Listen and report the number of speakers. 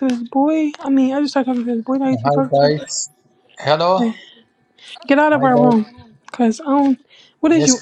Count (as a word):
two